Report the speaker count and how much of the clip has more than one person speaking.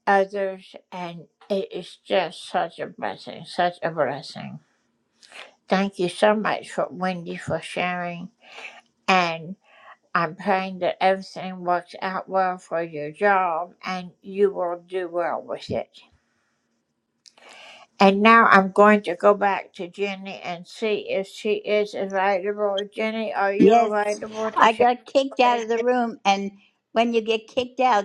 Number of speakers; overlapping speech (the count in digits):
2, about 4%